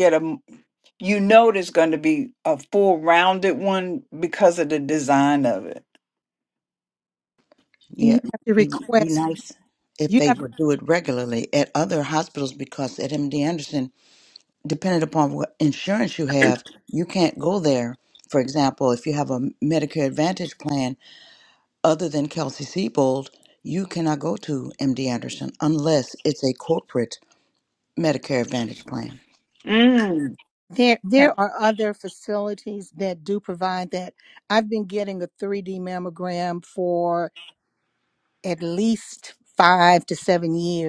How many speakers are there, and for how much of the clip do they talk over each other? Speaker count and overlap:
three, about 3%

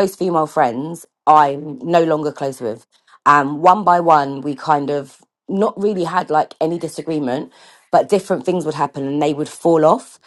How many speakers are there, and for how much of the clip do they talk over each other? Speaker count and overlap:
one, no overlap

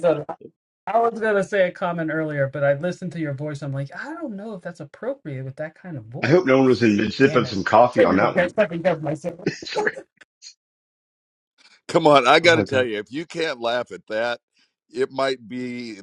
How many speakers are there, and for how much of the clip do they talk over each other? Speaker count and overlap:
three, about 11%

